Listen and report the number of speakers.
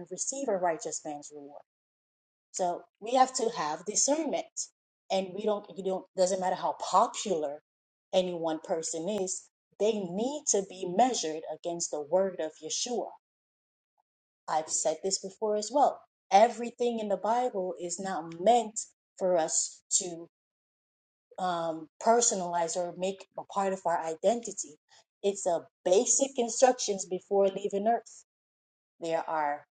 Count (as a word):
one